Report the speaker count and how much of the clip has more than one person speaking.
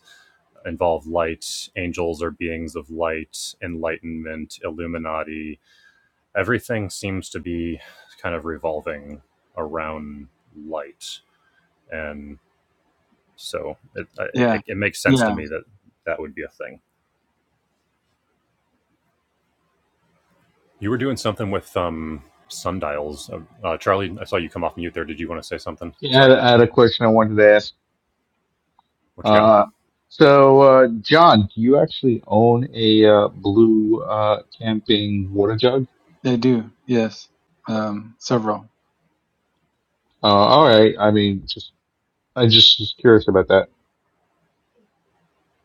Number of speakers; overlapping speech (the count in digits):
3, about 2%